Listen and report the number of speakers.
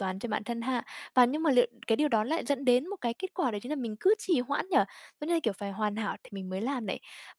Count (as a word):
one